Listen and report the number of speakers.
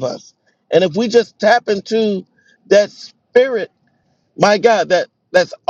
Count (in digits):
1